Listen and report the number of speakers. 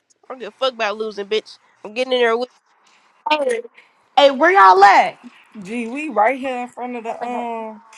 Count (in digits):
3